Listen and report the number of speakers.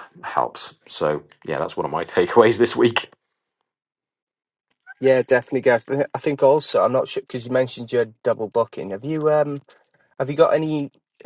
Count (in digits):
2